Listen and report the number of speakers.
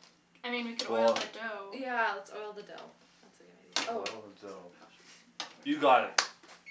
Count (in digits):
3